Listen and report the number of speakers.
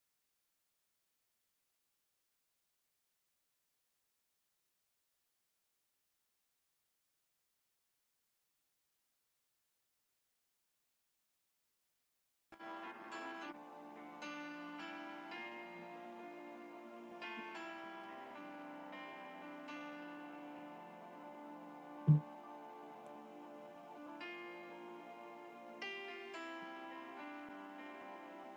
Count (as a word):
zero